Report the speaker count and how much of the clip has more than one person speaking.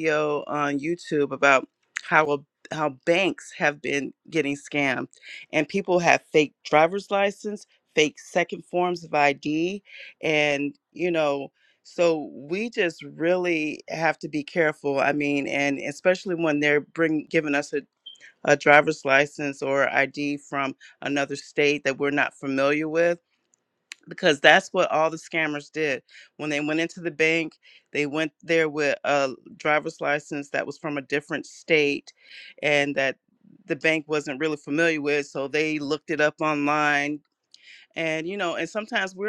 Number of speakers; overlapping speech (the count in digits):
1, no overlap